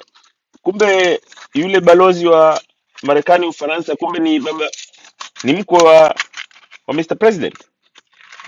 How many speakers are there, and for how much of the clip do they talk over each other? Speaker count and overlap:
1, no overlap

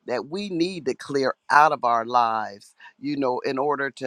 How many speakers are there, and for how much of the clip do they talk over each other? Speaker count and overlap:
1, no overlap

